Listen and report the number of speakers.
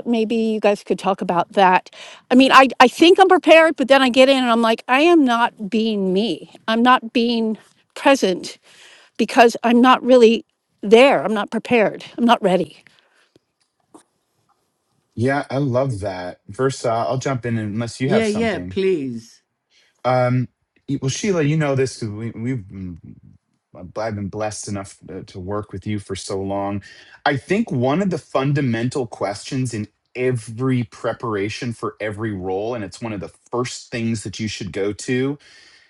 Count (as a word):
three